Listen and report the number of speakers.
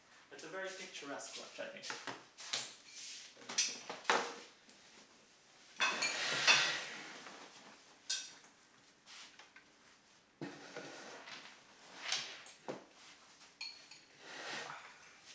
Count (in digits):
1